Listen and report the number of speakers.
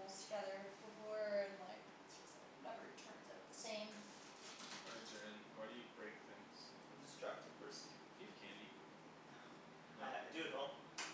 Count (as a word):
three